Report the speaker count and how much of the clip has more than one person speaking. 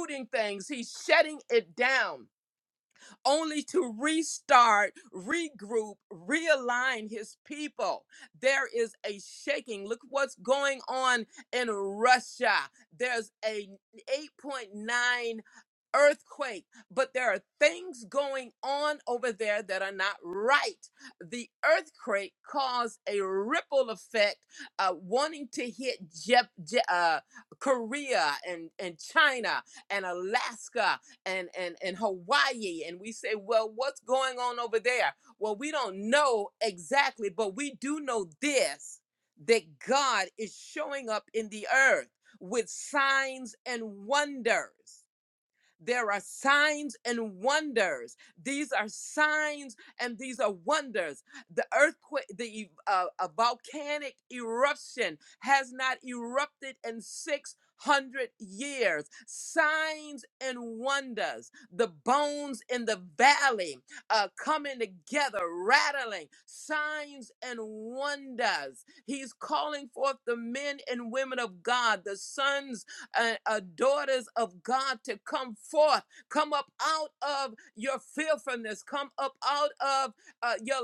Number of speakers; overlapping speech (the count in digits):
1, no overlap